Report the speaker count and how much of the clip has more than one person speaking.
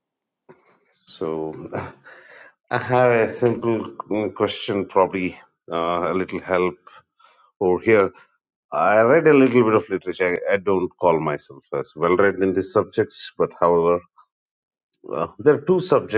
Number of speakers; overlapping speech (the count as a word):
one, no overlap